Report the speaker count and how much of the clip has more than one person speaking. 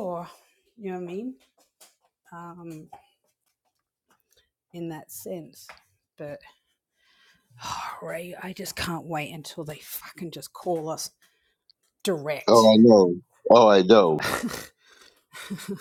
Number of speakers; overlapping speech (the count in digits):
2, about 2%